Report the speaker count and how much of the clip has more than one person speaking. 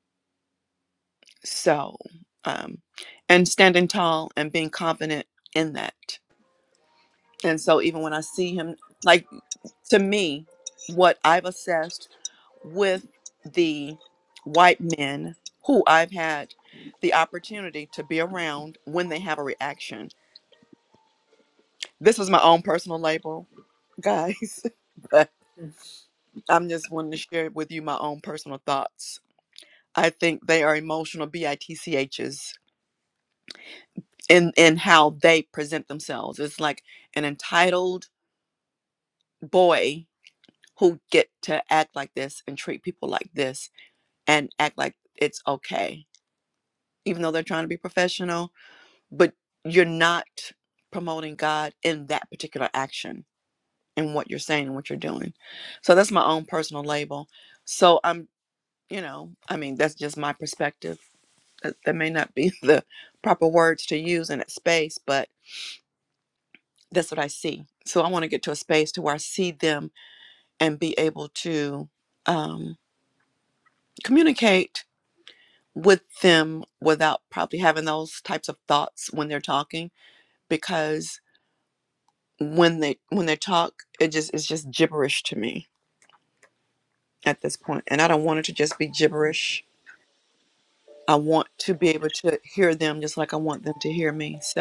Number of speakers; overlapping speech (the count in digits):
1, no overlap